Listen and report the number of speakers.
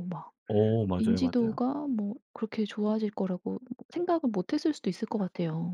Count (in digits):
2